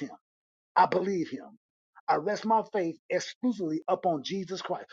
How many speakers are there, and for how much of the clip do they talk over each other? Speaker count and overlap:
1, no overlap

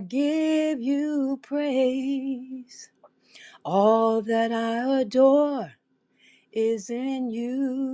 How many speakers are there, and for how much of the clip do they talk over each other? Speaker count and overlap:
1, no overlap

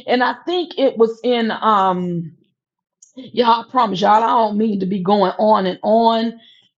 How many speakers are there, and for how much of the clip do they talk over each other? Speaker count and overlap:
1, no overlap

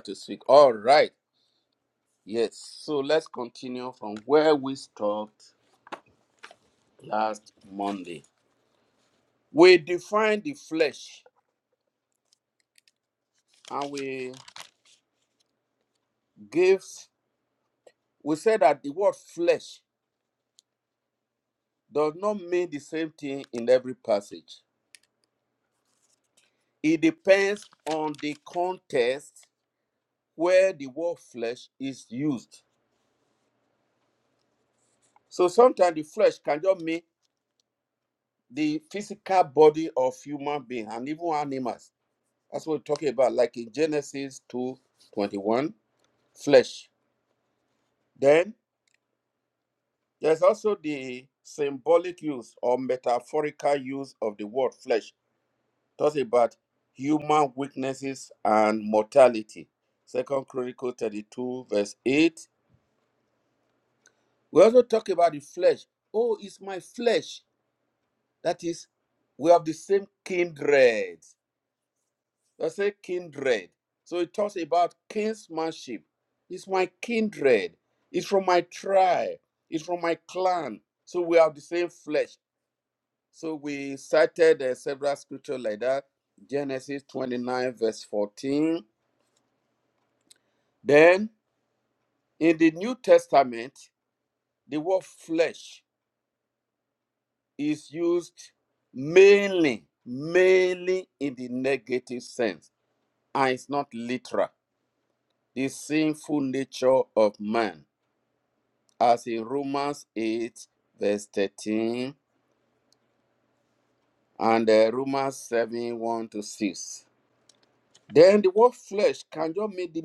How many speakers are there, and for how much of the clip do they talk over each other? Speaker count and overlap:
1, no overlap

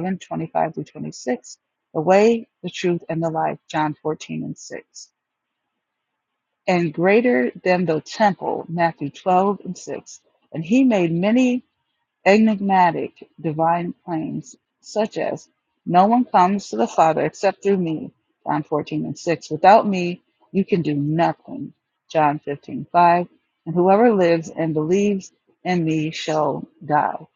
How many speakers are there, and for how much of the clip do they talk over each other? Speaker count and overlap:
1, no overlap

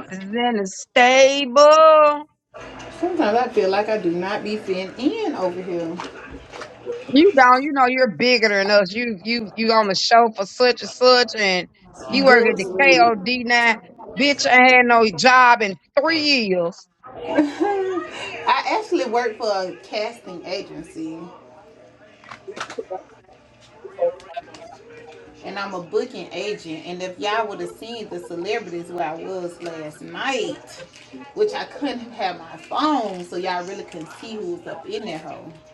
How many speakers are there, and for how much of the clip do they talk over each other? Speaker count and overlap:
2, about 3%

